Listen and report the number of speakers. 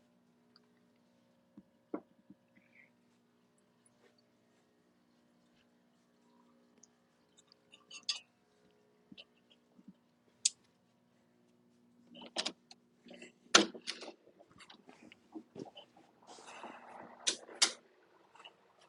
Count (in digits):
0